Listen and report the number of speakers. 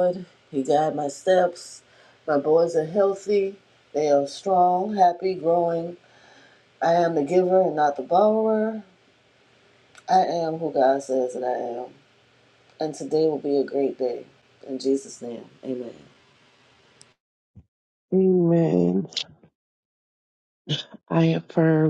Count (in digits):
2